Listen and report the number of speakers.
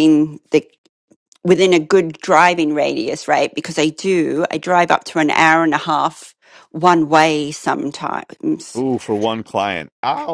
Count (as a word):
two